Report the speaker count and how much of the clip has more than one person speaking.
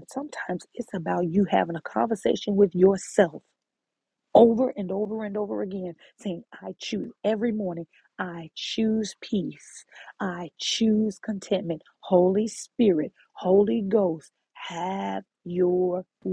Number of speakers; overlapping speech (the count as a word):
one, no overlap